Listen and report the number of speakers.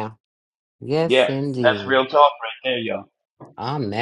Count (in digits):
2